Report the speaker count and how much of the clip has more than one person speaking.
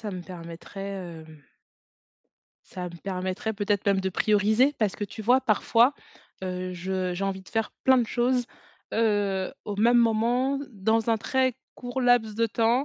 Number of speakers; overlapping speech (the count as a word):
one, no overlap